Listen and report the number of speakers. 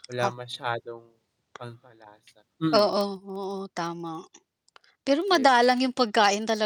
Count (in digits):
2